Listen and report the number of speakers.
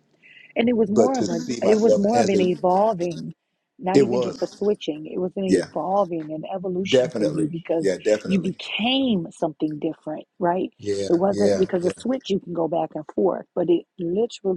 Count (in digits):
1